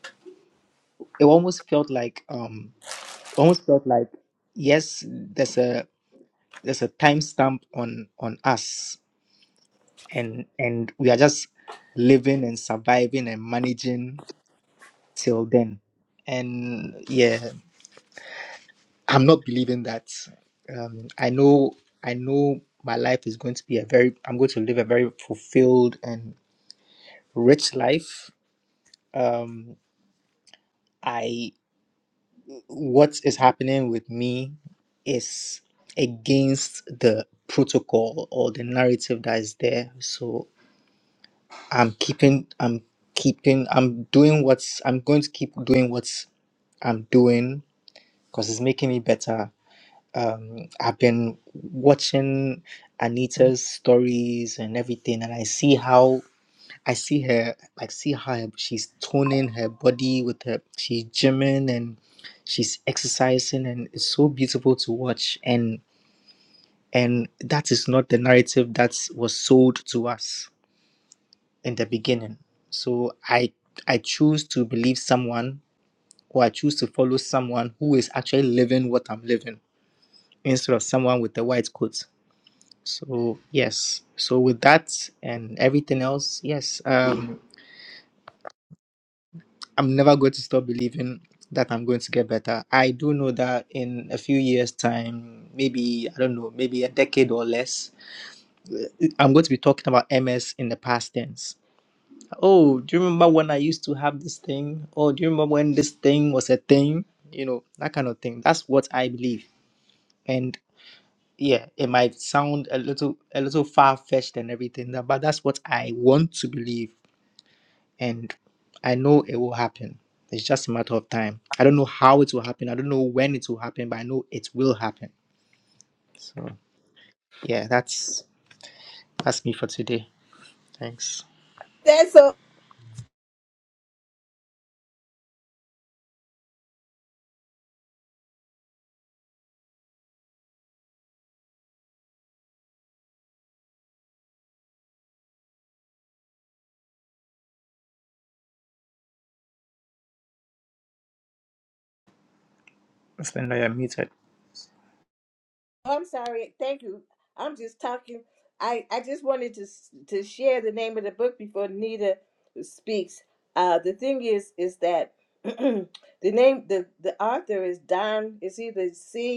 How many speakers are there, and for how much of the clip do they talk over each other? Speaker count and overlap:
2, no overlap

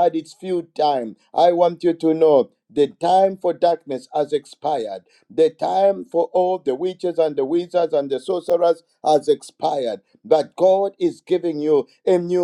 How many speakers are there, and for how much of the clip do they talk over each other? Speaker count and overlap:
1, no overlap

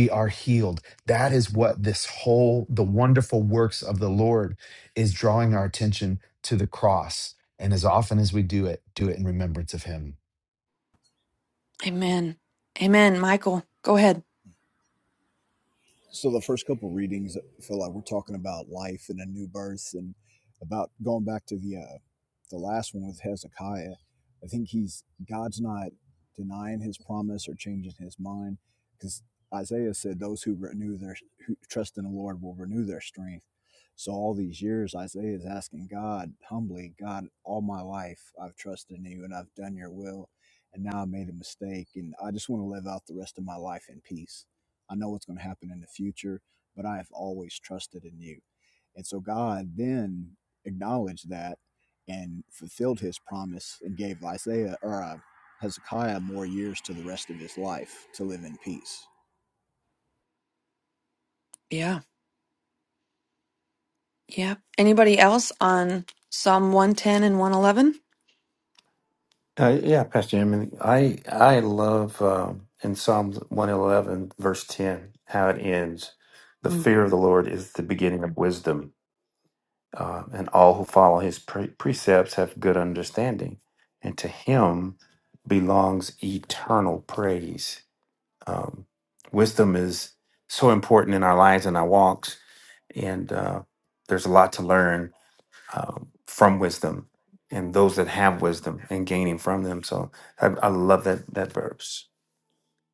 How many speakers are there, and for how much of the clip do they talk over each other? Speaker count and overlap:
4, under 1%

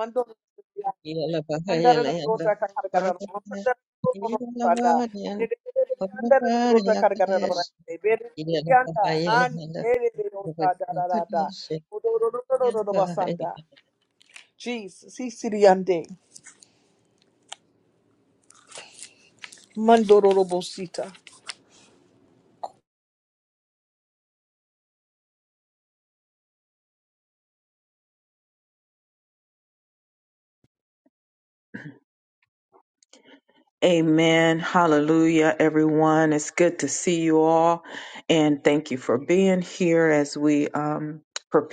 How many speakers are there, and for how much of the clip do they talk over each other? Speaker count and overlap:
3, about 14%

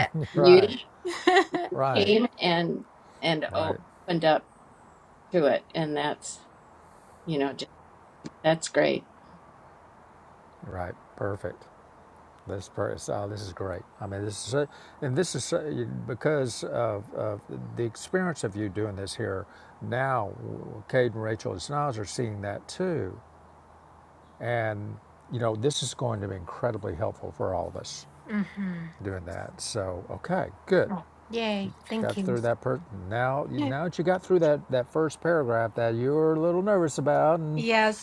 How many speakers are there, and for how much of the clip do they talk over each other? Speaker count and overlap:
3, about 4%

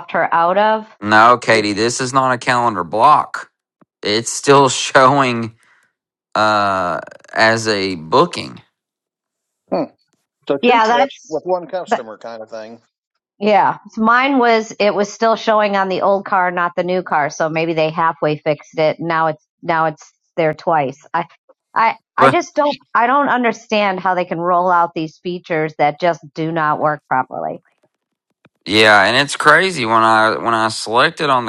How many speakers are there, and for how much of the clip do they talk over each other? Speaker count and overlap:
3, about 2%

